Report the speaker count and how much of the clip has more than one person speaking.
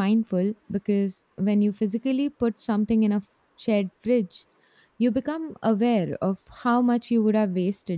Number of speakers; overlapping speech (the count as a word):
one, no overlap